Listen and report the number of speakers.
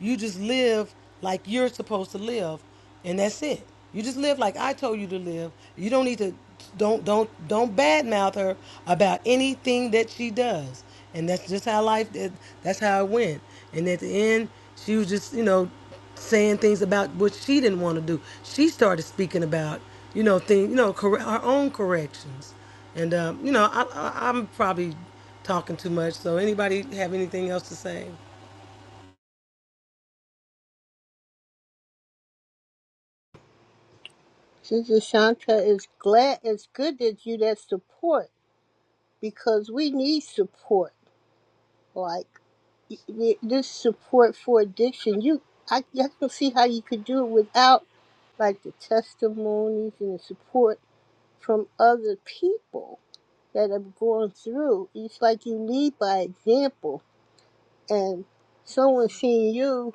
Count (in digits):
2